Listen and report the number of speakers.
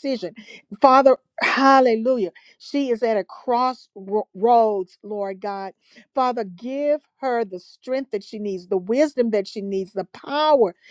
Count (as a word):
one